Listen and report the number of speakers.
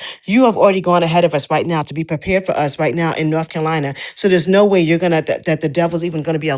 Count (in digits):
1